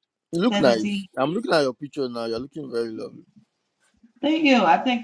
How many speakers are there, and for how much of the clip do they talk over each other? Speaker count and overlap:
two, about 11%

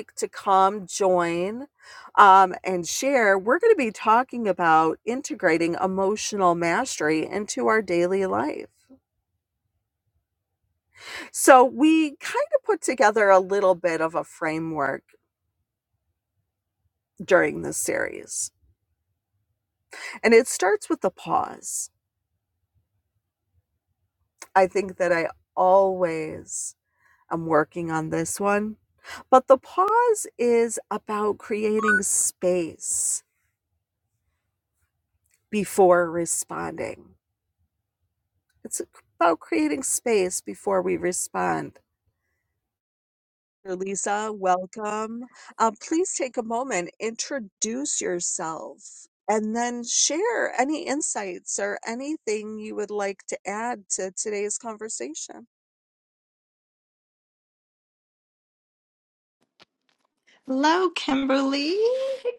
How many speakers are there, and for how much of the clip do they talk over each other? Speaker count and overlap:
two, no overlap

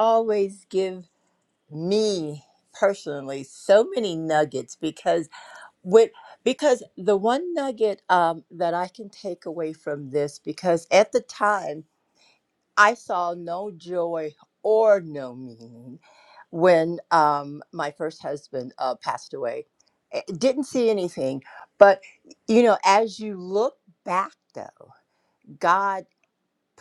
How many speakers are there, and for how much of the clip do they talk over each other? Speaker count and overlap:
one, no overlap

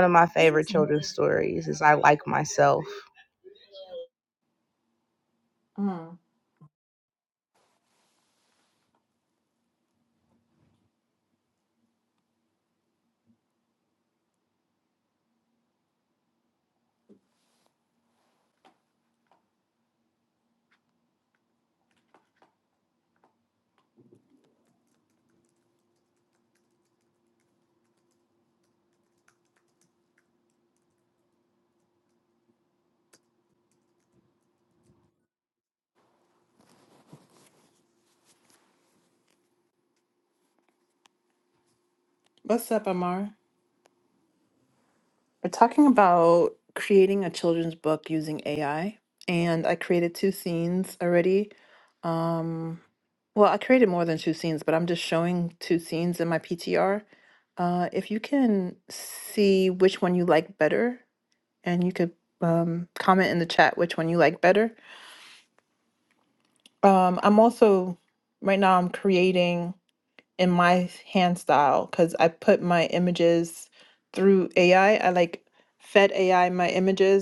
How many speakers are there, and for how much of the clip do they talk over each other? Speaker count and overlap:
two, no overlap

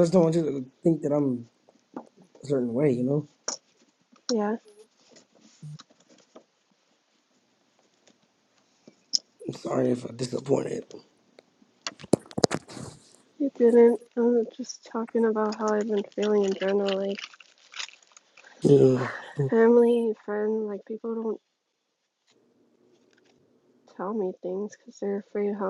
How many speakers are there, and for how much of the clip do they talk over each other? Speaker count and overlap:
two, no overlap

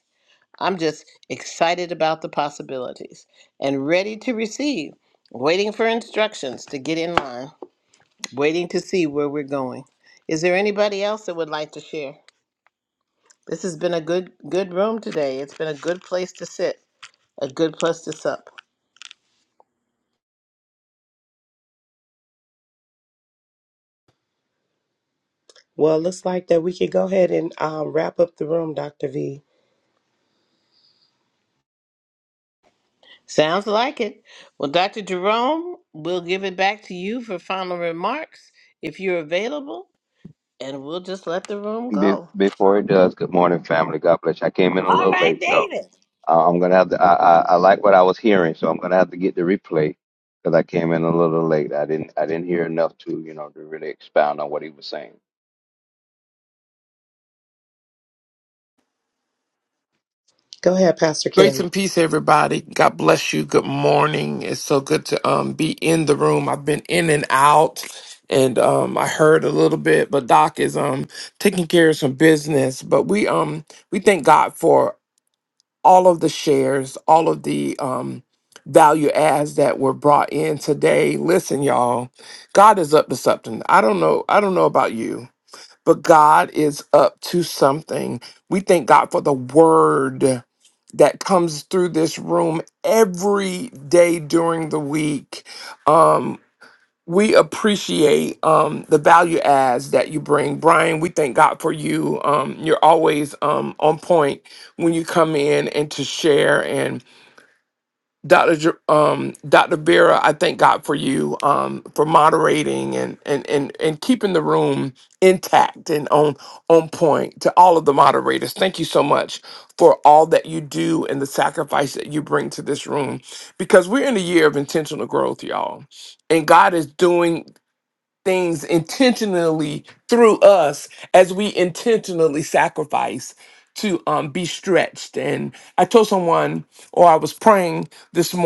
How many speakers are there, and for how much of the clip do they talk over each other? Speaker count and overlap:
four, under 1%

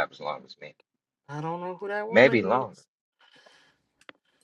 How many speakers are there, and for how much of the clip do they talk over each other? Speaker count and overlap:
two, about 12%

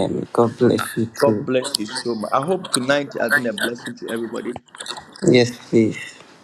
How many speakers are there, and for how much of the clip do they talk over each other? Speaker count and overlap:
two, about 4%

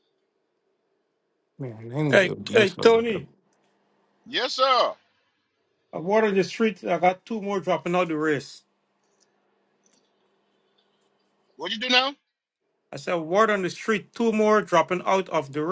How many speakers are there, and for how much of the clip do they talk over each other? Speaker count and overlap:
three, about 7%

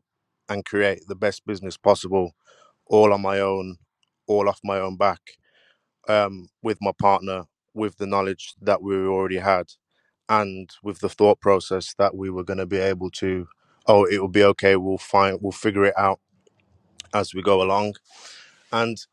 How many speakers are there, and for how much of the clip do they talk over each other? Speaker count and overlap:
one, no overlap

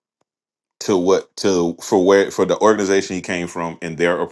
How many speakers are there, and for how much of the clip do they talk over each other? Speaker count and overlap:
one, no overlap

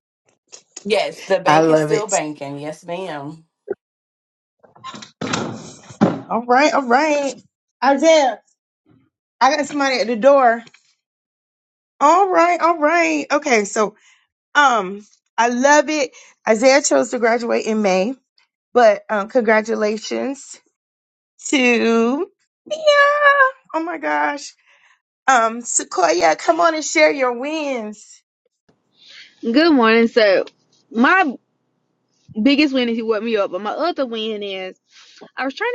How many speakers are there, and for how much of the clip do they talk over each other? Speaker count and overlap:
three, about 2%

